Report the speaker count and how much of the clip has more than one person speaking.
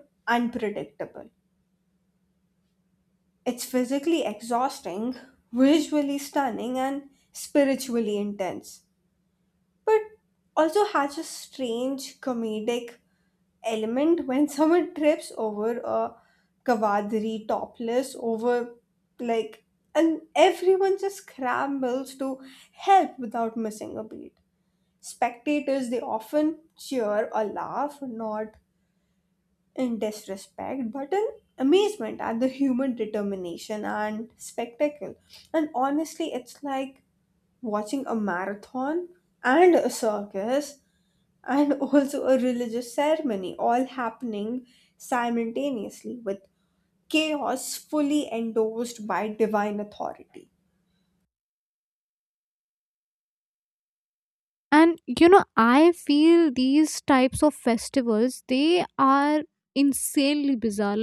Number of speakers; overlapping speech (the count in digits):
2, no overlap